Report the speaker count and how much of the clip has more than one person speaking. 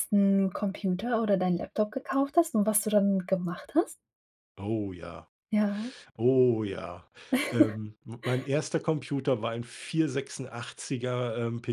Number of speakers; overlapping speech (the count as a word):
two, no overlap